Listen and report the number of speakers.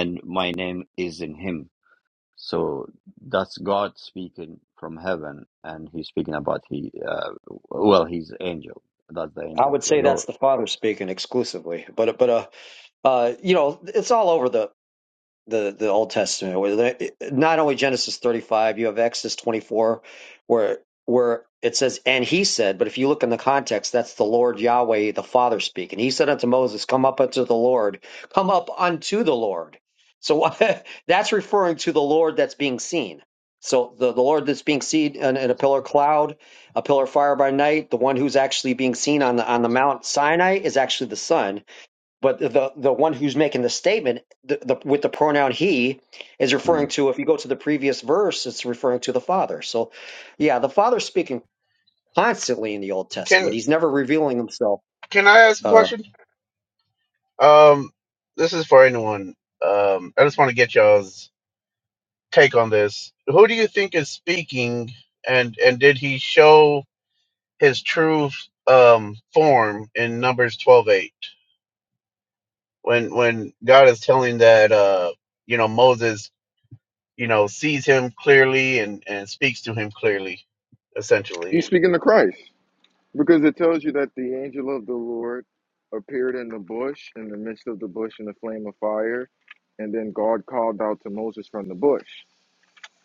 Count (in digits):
4